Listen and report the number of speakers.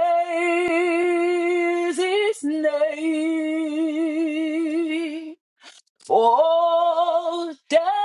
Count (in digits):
1